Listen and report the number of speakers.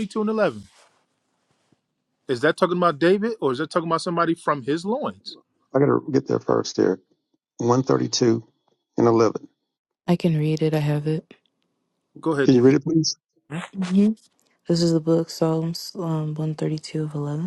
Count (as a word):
three